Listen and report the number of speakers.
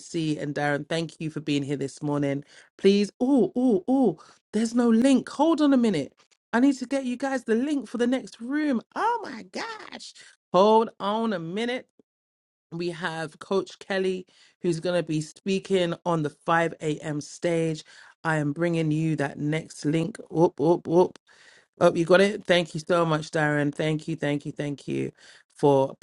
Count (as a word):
one